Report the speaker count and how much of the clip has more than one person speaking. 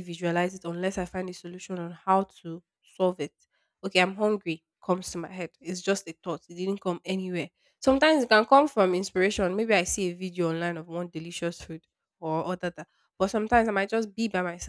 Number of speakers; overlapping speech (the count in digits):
1, no overlap